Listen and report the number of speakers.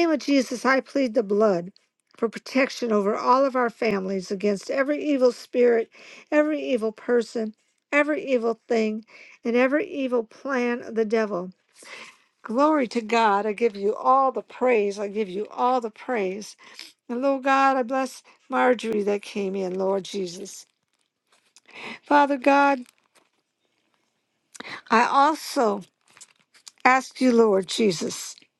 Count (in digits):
1